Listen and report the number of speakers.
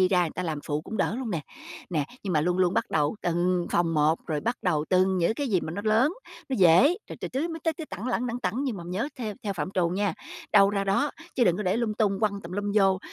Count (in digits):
1